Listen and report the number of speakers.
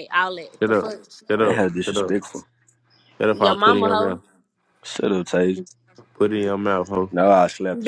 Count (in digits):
3